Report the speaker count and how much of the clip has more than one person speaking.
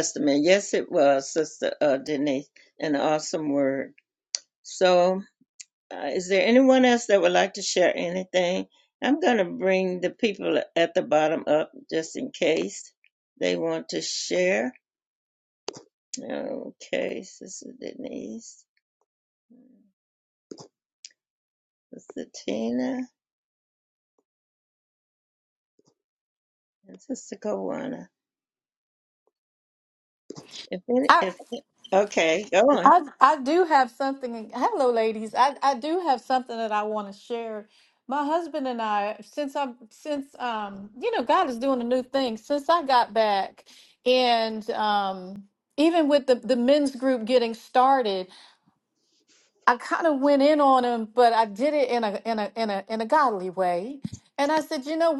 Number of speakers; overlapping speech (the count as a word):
two, about 1%